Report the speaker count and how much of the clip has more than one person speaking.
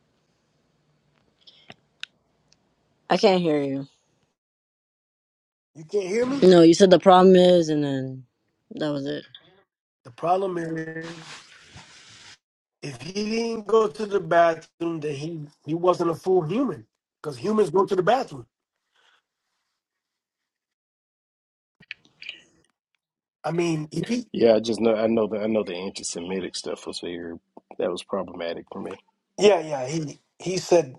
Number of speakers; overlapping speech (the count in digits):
3, under 1%